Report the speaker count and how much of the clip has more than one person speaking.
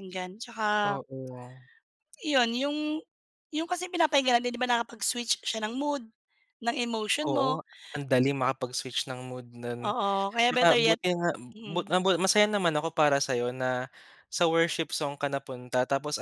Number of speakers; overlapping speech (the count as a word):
two, about 8%